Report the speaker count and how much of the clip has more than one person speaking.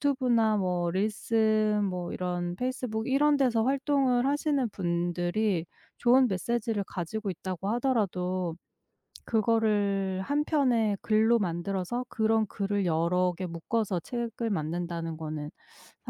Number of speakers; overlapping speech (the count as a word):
one, no overlap